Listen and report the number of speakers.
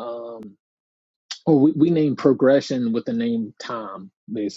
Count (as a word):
one